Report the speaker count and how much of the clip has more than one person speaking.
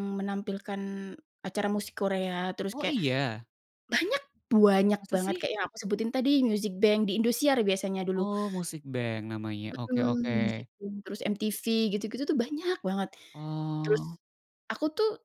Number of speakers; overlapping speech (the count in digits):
2, about 10%